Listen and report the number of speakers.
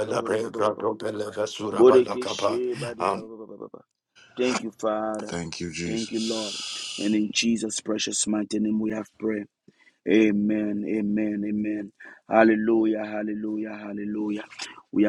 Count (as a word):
three